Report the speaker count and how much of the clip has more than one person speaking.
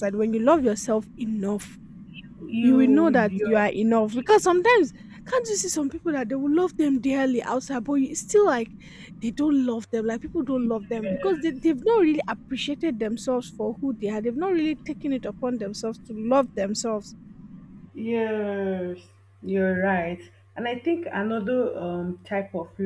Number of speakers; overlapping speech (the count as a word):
two, about 9%